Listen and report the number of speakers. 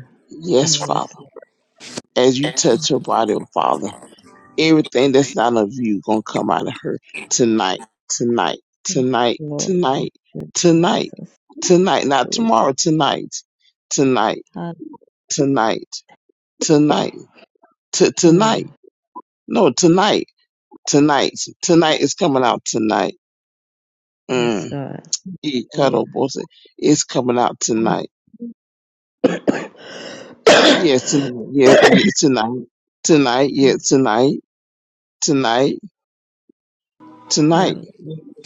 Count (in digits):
2